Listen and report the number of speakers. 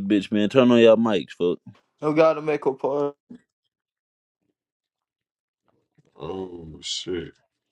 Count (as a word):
three